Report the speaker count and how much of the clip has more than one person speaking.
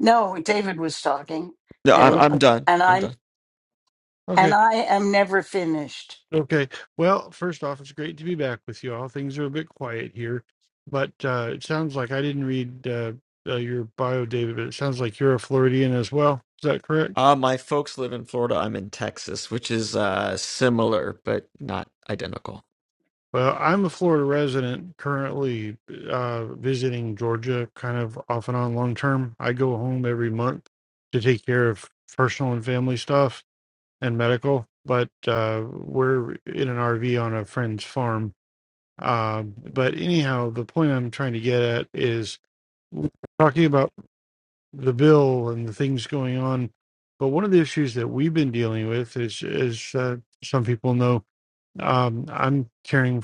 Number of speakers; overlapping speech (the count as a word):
three, about 2%